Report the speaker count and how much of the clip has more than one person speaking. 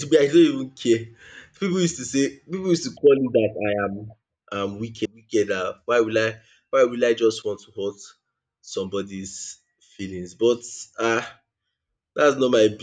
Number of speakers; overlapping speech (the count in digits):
1, no overlap